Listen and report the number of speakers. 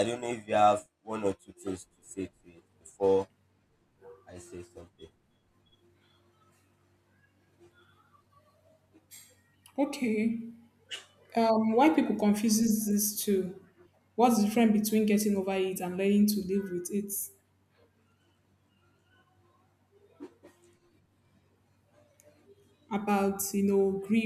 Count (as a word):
two